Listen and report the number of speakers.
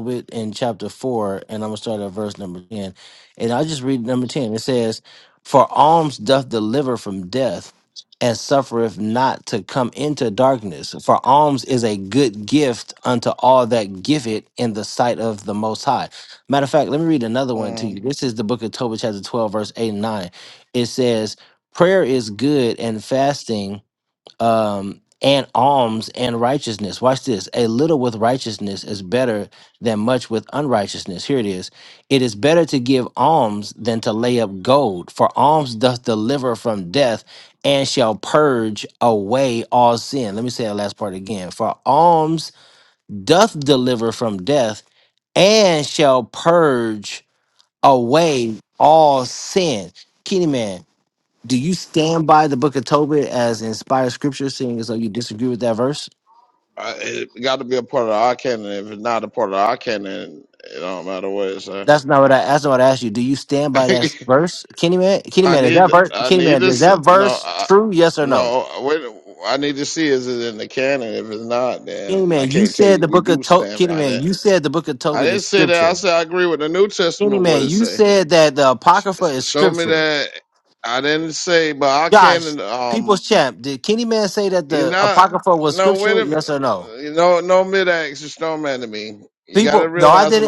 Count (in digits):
2